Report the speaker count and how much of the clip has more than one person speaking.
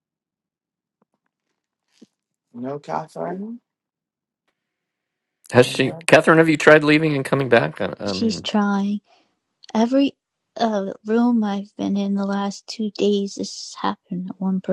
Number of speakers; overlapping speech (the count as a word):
three, about 5%